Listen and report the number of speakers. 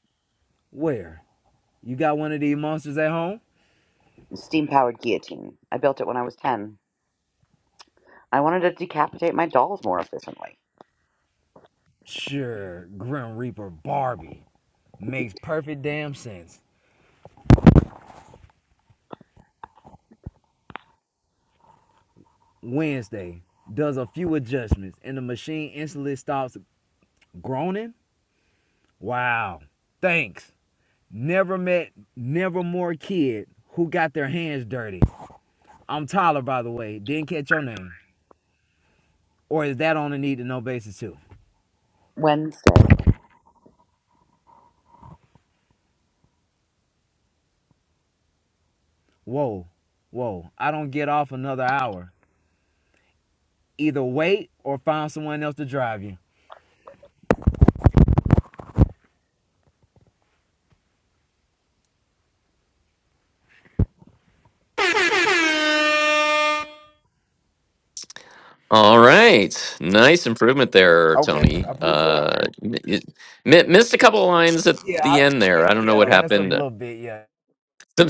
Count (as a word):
three